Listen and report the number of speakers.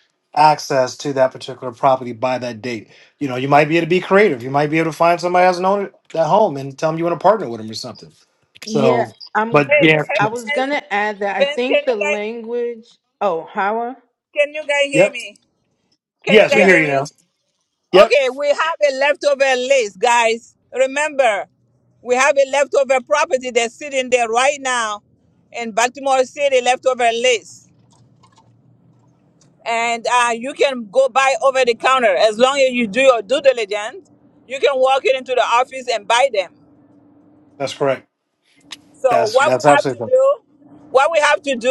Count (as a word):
three